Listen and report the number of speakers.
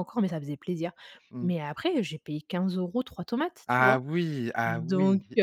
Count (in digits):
2